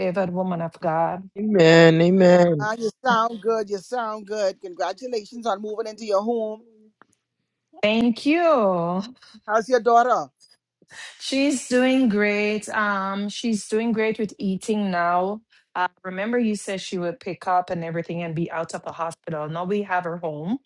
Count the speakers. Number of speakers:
three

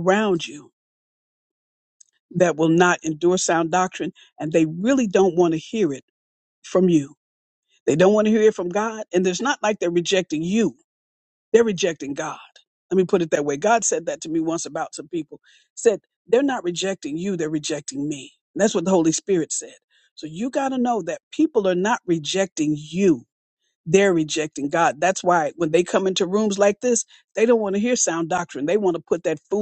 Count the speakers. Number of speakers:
one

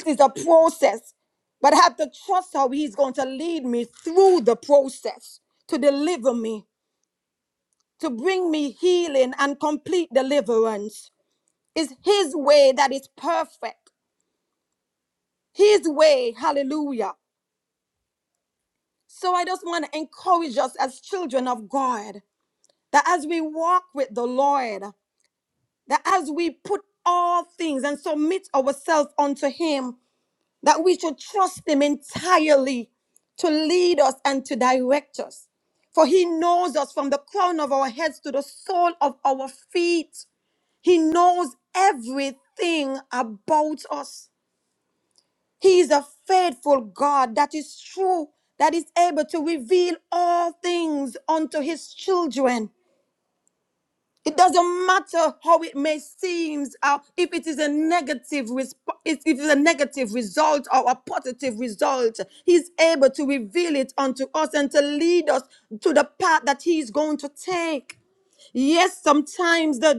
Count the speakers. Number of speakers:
one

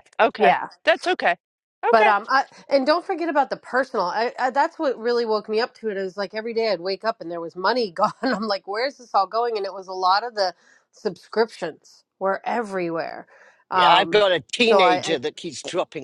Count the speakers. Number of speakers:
three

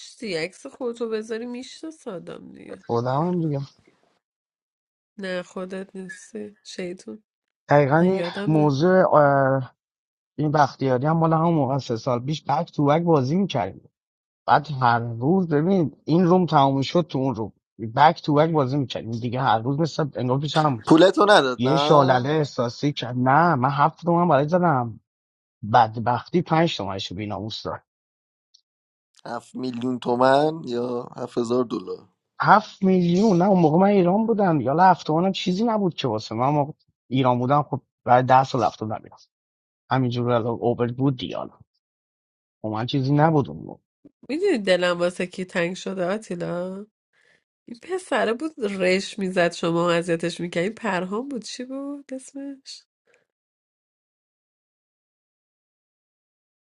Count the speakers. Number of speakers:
three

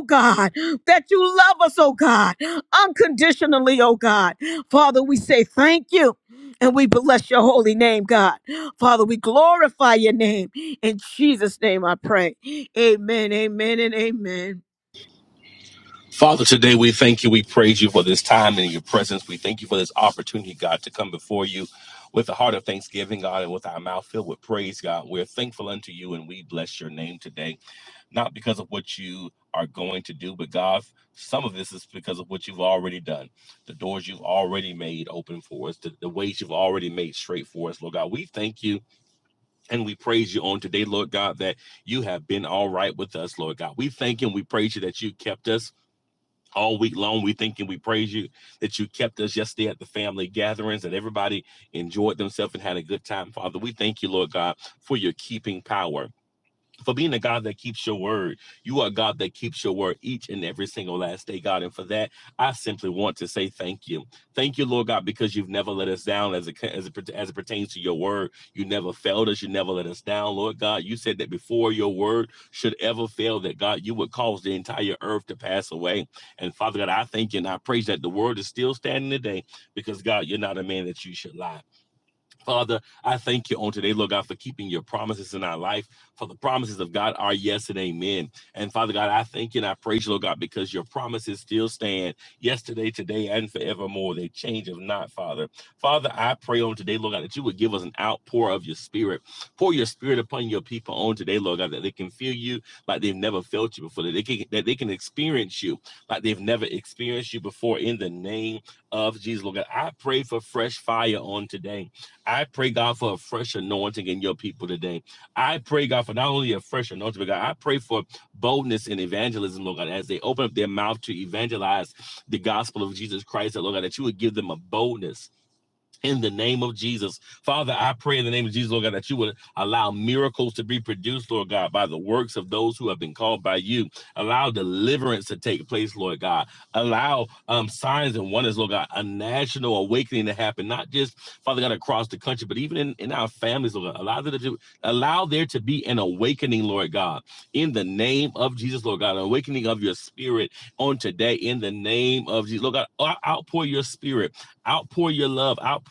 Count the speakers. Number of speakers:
two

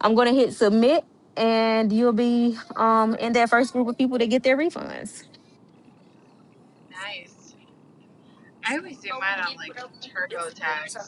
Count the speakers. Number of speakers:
two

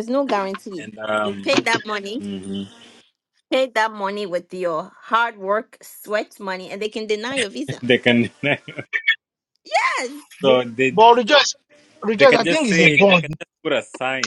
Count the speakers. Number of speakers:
three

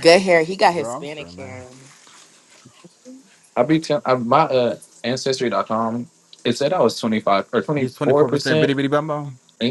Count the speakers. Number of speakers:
three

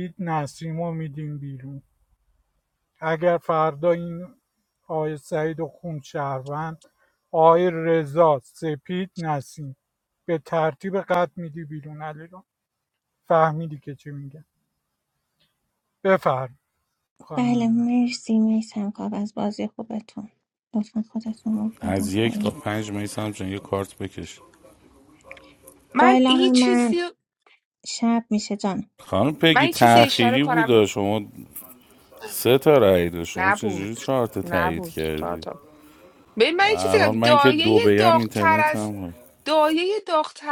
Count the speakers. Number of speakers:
four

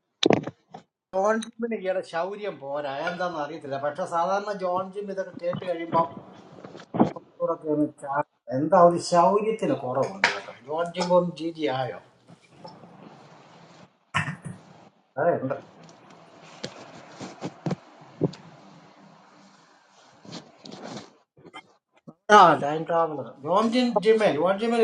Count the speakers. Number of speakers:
one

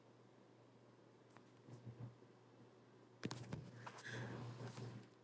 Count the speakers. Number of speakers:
zero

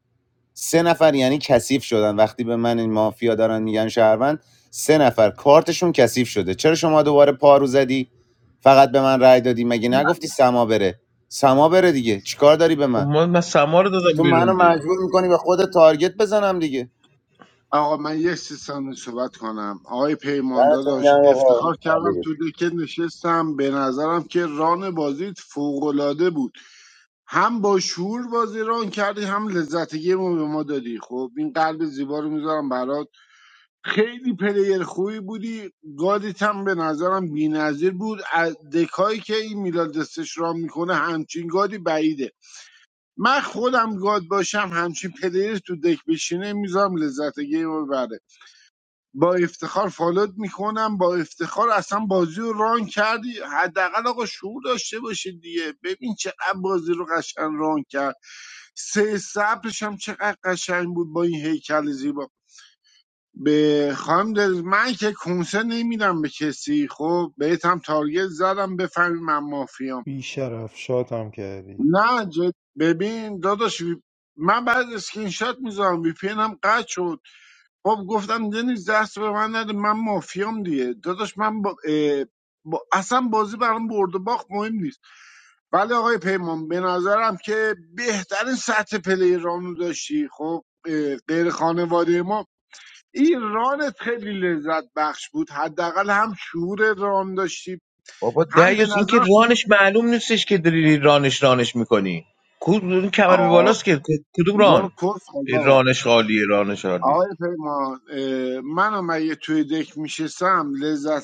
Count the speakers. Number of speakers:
four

